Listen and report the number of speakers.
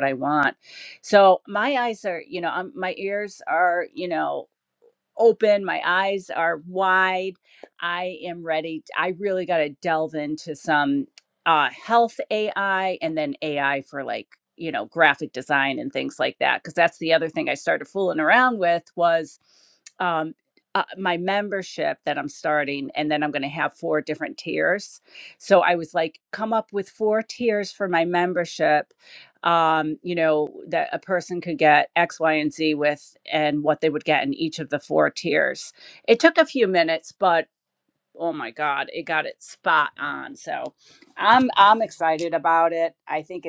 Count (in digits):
1